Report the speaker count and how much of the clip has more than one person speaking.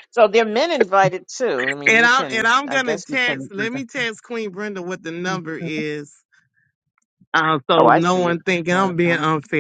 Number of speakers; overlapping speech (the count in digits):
2, about 28%